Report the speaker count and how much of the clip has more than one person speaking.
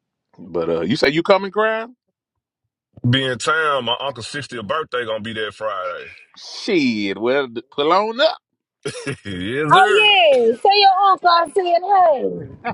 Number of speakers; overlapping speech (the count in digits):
3, about 4%